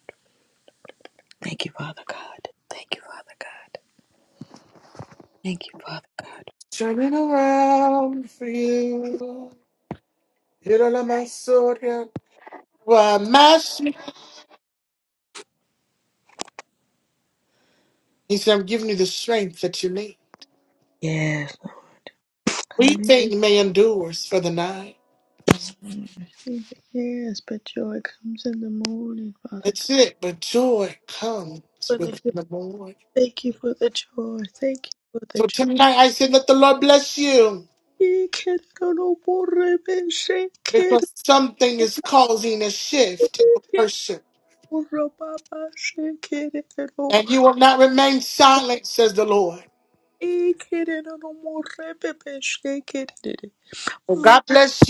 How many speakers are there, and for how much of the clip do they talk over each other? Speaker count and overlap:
two, about 3%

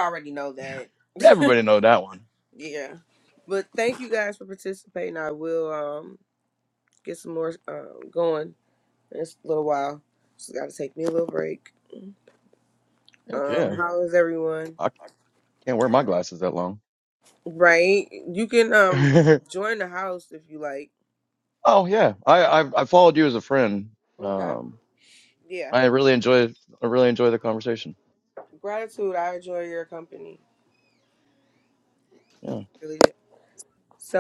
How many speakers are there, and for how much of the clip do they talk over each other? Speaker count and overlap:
two, about 2%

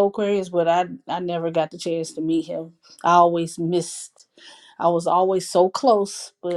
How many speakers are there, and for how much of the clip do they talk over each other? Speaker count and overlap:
one, no overlap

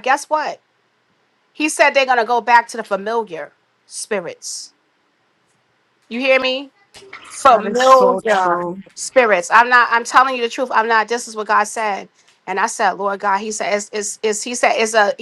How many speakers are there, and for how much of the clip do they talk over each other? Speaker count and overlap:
two, about 5%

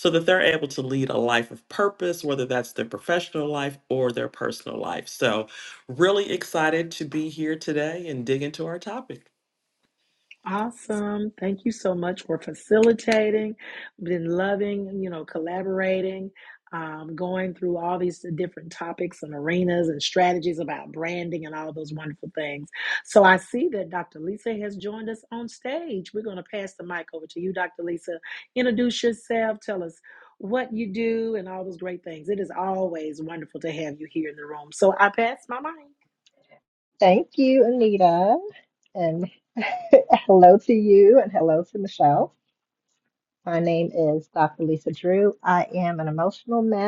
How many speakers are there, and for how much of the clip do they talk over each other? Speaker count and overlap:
three, no overlap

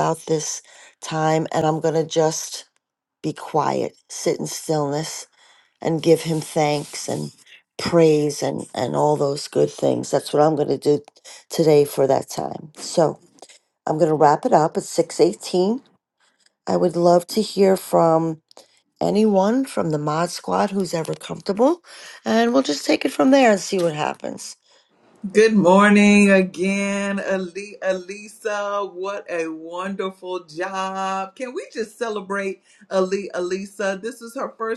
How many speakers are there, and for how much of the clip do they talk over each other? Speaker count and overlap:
two, no overlap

